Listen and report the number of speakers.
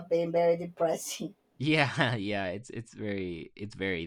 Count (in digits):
2